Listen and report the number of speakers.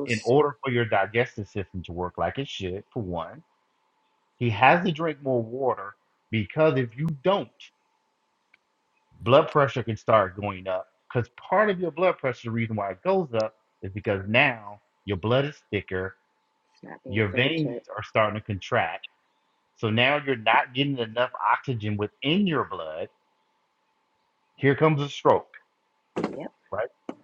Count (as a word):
two